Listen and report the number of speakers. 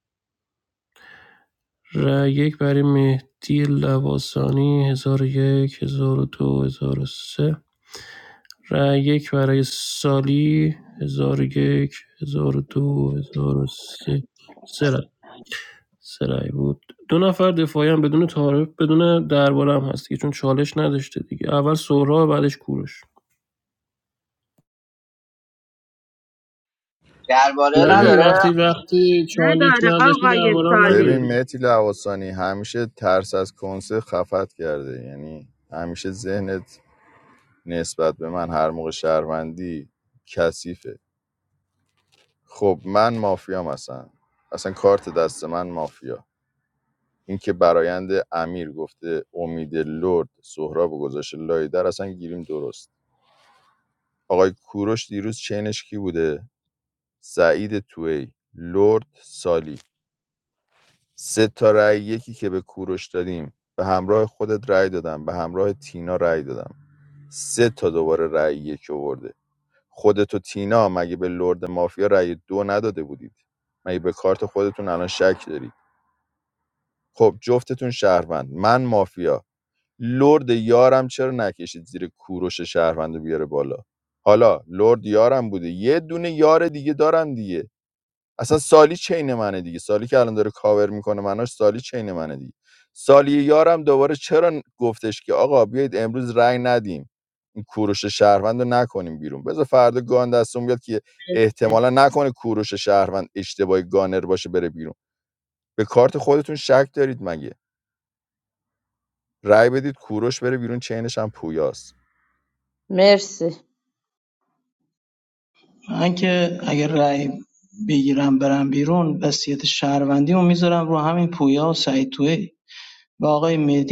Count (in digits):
5